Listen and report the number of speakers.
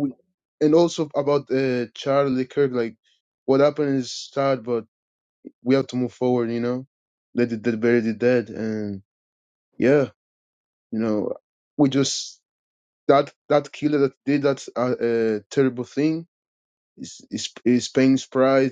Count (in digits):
1